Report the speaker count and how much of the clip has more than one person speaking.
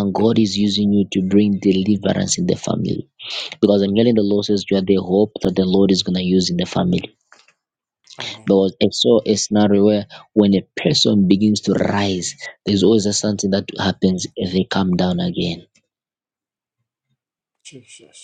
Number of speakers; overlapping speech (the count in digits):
2, about 2%